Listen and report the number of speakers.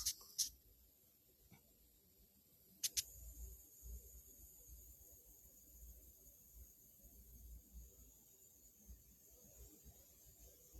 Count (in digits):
0